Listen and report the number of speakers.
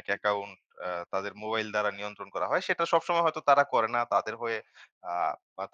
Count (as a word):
one